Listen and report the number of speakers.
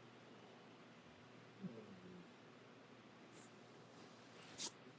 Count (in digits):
0